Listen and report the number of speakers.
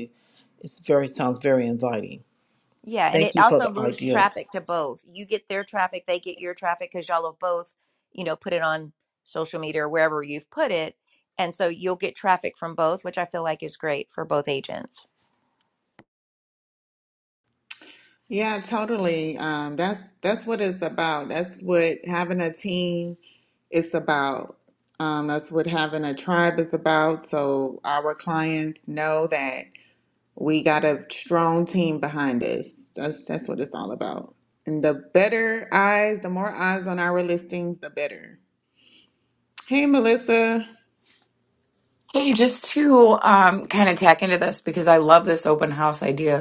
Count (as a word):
four